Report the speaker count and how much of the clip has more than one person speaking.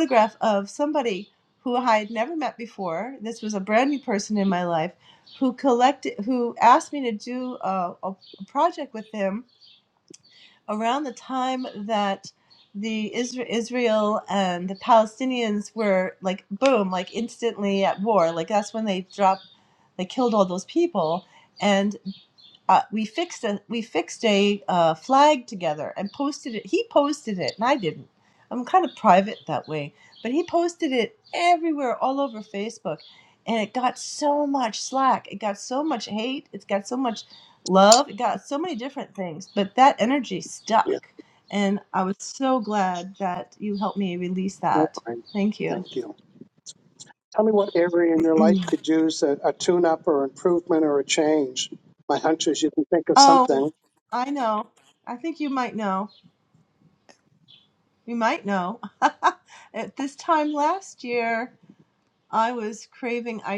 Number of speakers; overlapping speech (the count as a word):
two, about 2%